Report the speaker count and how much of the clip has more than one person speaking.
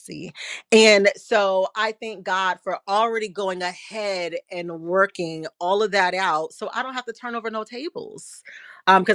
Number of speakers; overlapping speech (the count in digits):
1, no overlap